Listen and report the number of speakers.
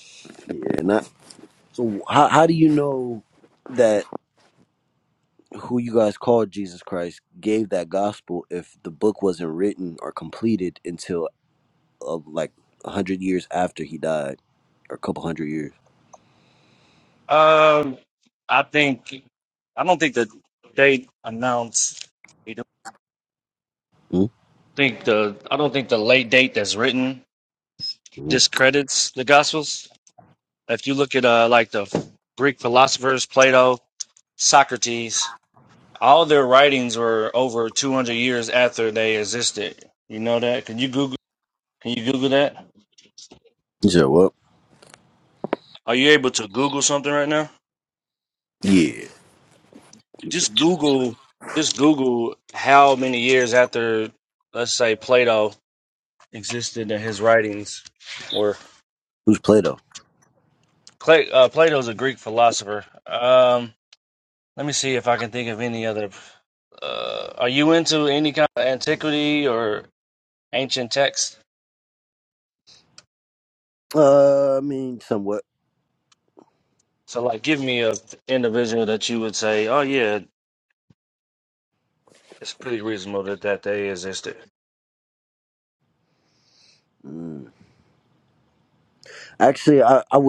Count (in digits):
2